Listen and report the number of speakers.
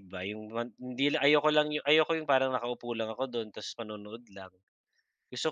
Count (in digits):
1